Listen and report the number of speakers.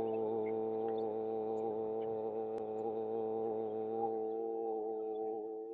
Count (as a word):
zero